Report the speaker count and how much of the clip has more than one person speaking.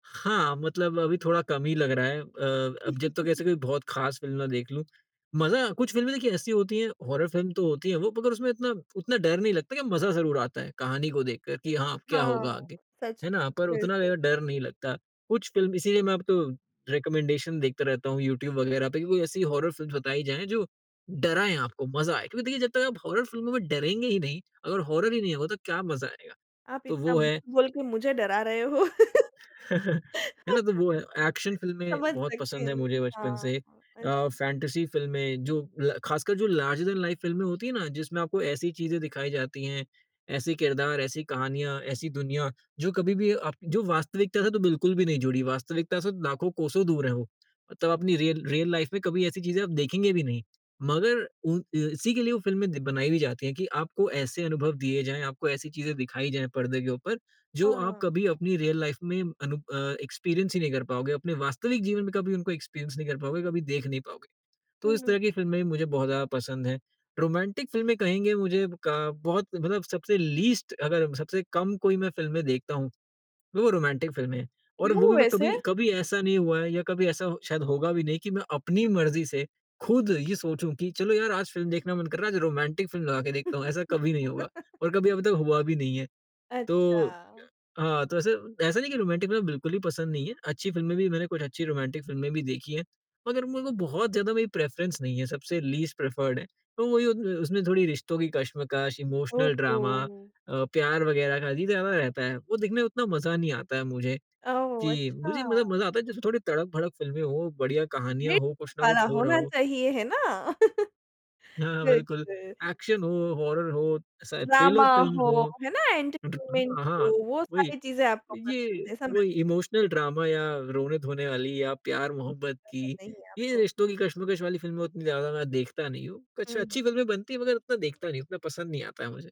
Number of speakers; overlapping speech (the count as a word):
two, about 8%